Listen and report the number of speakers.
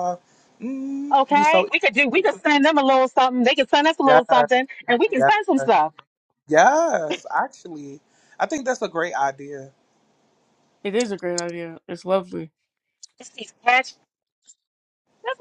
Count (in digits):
3